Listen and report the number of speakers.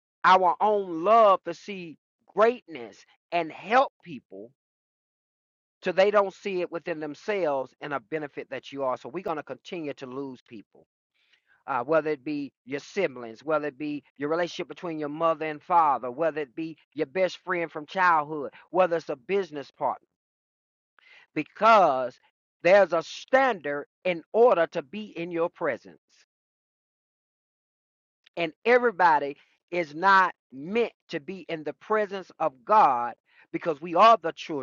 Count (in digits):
1